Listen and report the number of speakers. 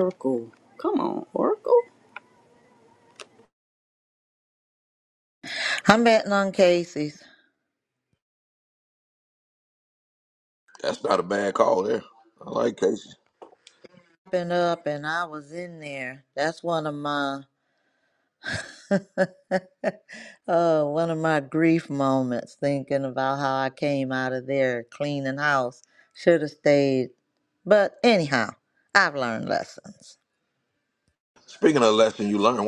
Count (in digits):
3